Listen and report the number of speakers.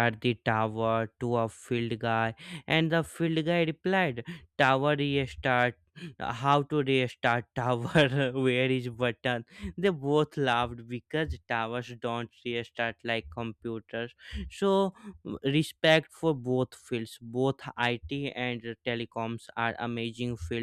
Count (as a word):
one